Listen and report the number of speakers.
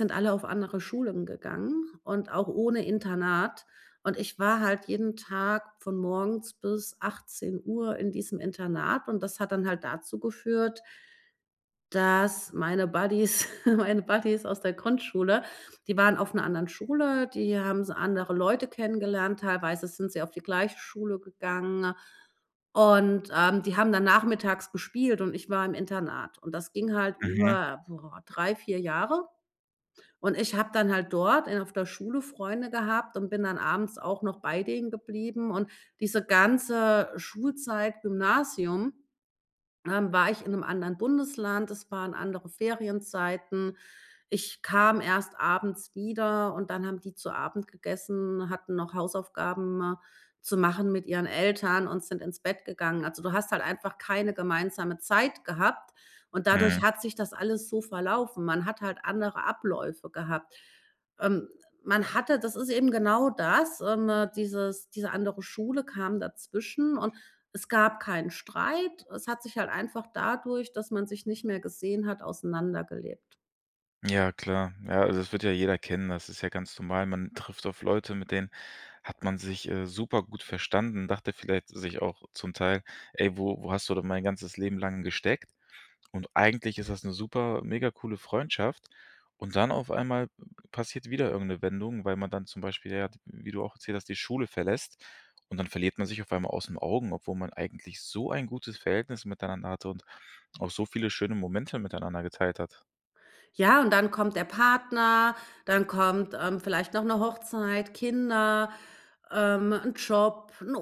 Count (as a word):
two